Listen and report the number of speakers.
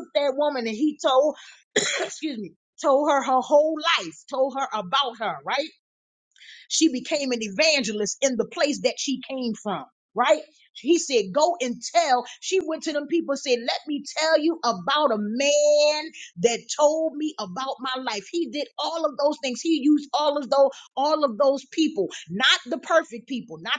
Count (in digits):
1